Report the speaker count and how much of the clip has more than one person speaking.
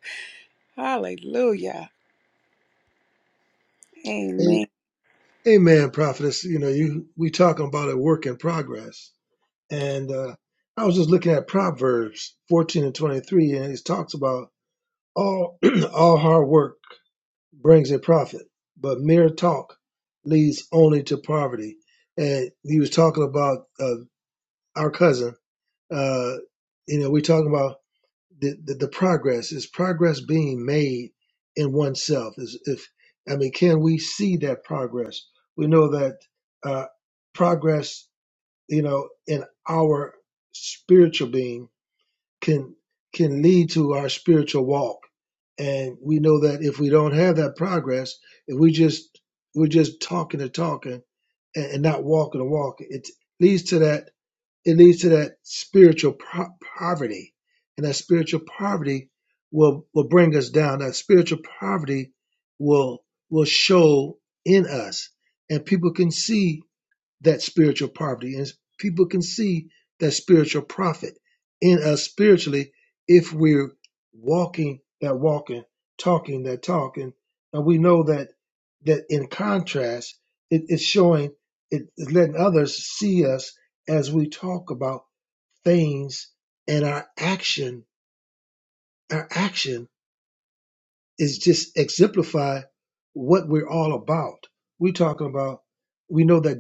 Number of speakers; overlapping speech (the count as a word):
two, no overlap